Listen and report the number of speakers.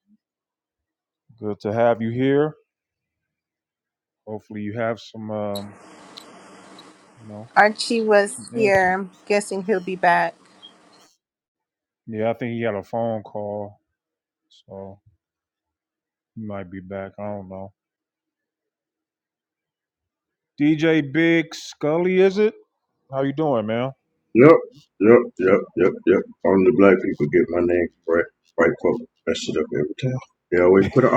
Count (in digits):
3